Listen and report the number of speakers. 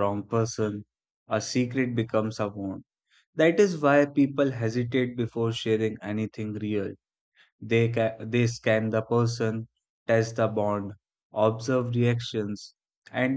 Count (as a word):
one